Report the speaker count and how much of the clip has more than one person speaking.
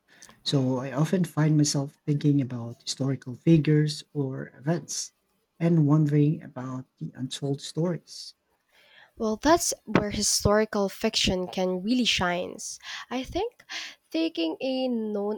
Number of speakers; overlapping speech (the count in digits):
2, no overlap